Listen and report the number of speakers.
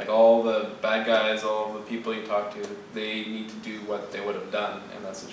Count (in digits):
1